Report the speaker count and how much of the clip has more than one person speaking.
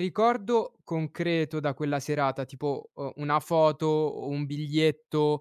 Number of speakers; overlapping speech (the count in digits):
1, no overlap